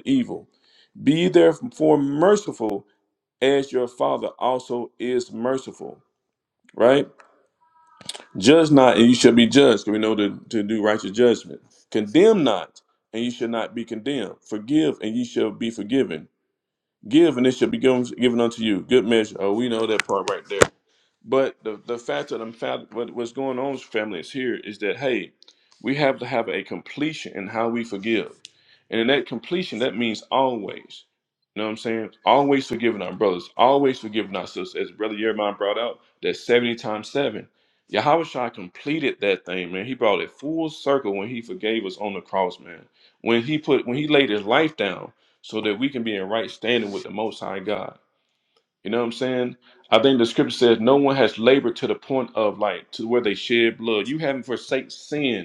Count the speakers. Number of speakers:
1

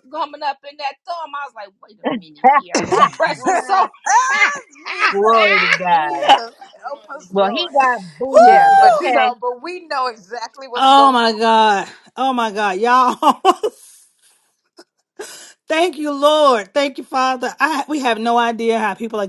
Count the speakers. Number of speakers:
4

